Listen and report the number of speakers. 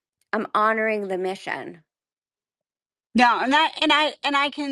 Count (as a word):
two